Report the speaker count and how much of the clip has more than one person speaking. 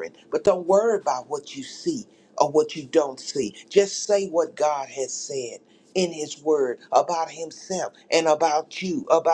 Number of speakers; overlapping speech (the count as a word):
one, no overlap